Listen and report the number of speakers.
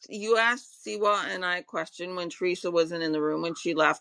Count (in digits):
1